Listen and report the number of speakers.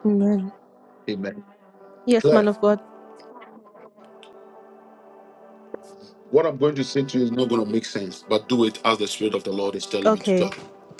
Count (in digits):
2